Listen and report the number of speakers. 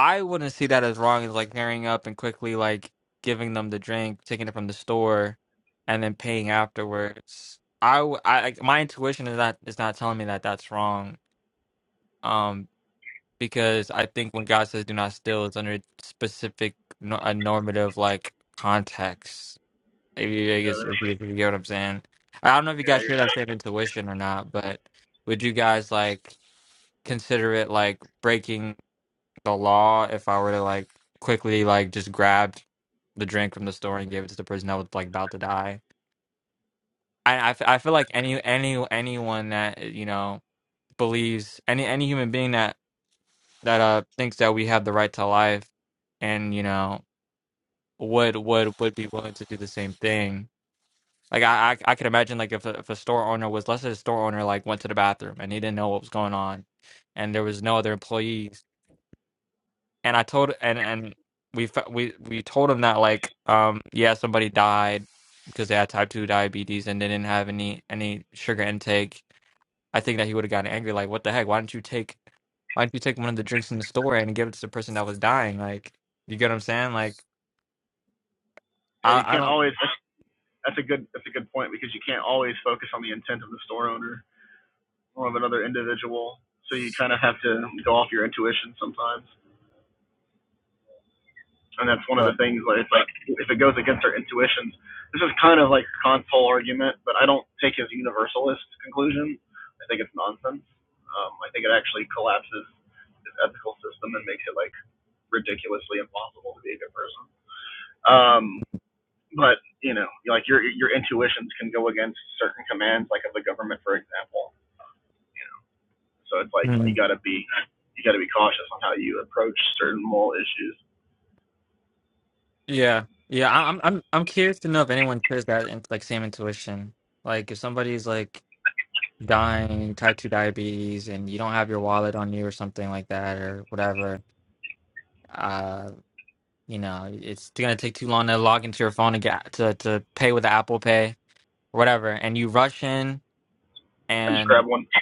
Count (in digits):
2